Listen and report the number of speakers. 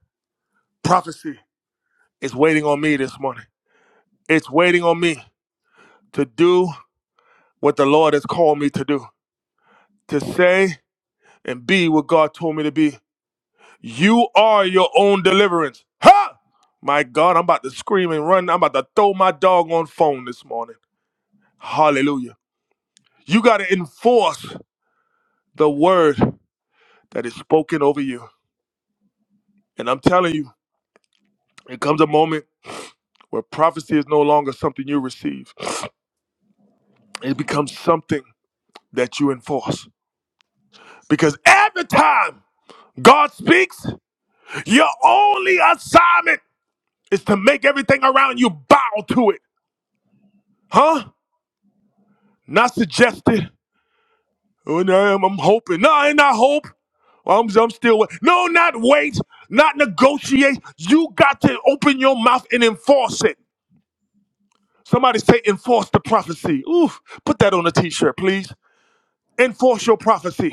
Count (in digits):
1